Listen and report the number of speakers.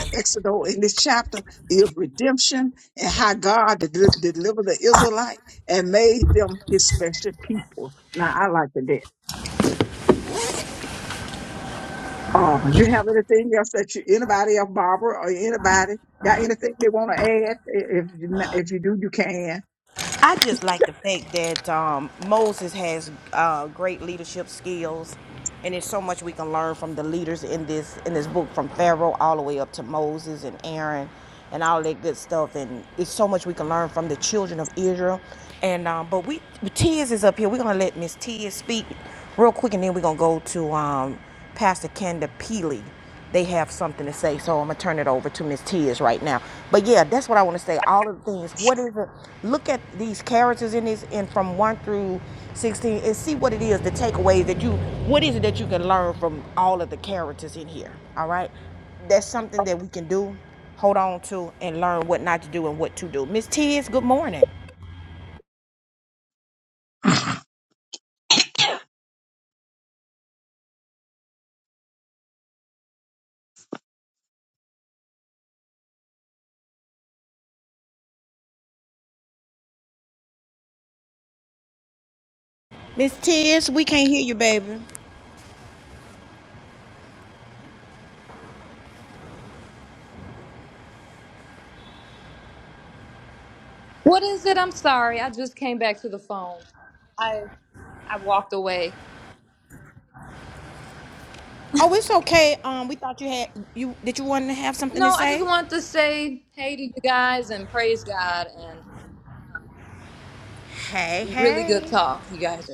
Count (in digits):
3